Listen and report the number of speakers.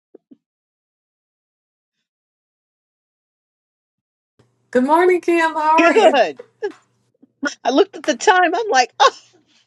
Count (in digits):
2